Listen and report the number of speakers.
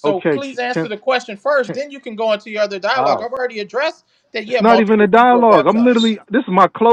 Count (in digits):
2